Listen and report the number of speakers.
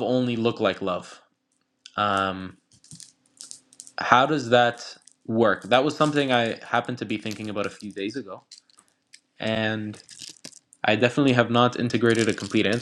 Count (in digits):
1